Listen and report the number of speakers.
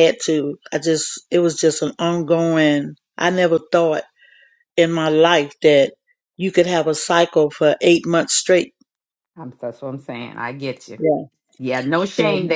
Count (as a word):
two